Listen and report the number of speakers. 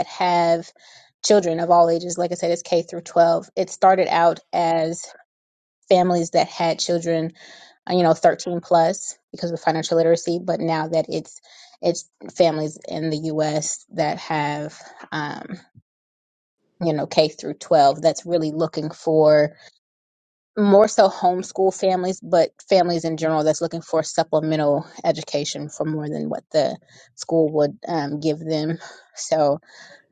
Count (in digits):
1